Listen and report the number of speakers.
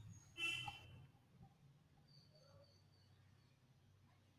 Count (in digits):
0